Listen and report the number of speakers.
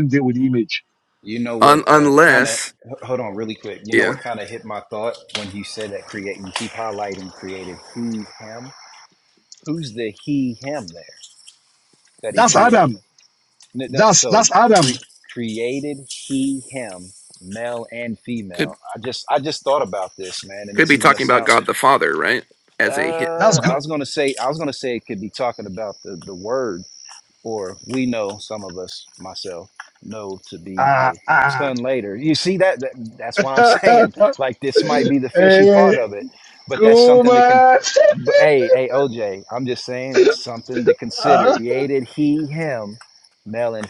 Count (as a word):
three